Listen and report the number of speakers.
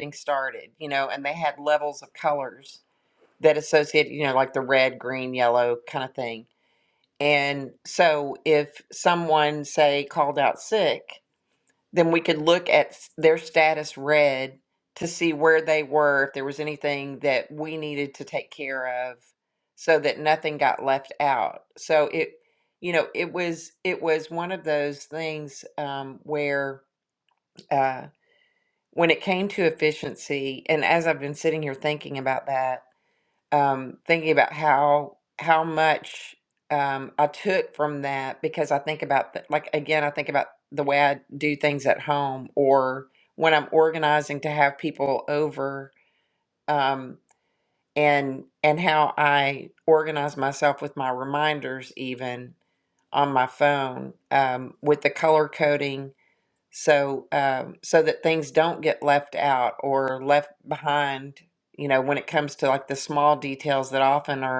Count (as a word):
one